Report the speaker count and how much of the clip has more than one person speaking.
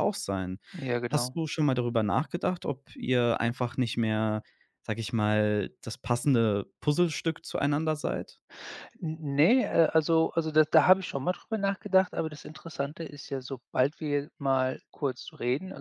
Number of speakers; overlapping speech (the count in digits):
2, about 1%